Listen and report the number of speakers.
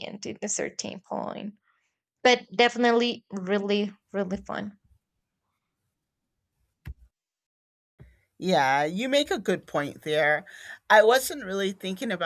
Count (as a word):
two